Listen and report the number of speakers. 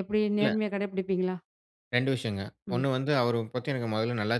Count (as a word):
two